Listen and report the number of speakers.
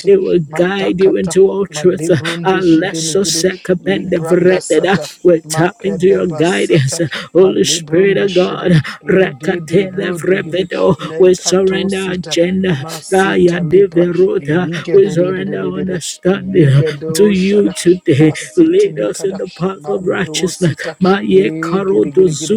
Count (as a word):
two